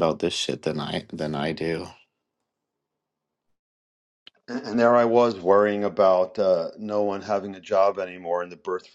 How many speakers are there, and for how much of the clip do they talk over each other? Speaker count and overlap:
2, no overlap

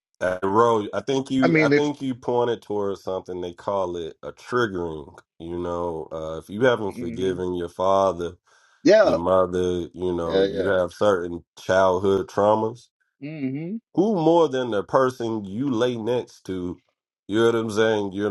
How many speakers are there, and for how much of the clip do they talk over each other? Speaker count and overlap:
2, about 8%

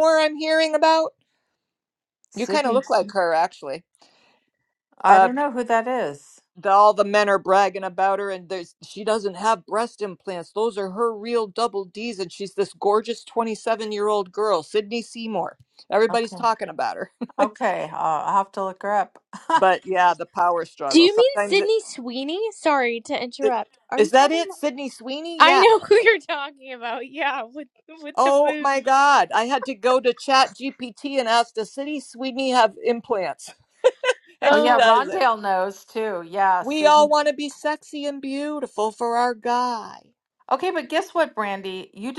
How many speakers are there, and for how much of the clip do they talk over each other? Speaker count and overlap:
3, about 11%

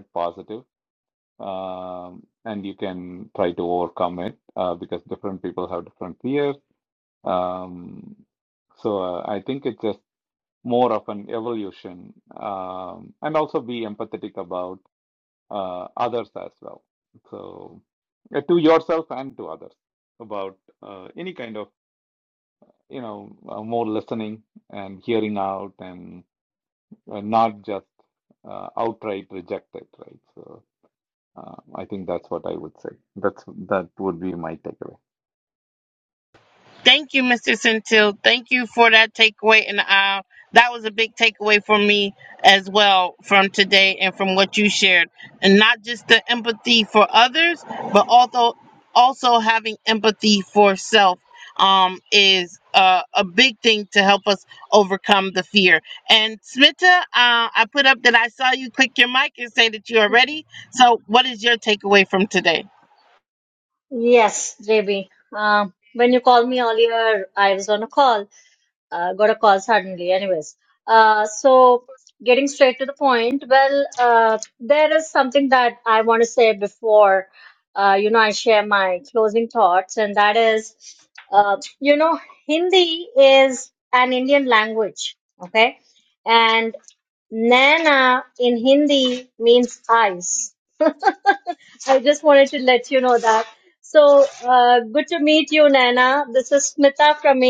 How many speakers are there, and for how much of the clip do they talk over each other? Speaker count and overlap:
3, no overlap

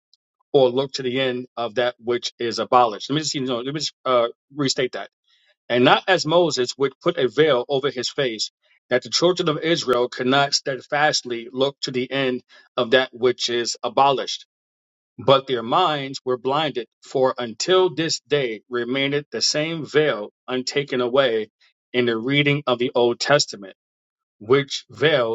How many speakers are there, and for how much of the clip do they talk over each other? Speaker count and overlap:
1, no overlap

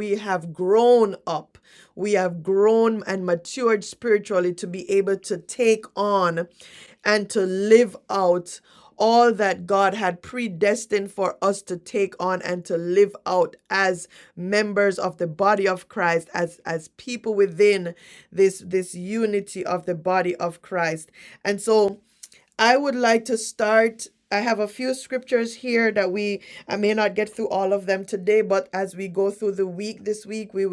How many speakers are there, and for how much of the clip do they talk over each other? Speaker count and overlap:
1, no overlap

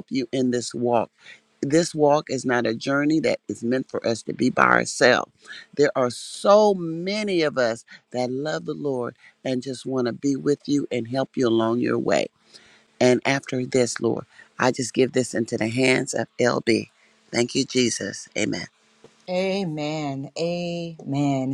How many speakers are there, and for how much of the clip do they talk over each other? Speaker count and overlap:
2, no overlap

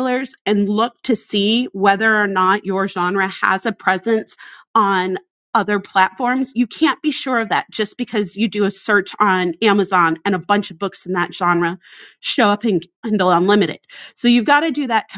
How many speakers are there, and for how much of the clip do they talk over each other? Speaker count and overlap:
1, no overlap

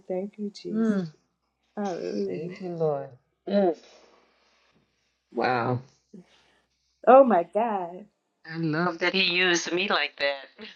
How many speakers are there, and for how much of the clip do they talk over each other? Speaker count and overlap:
2, about 6%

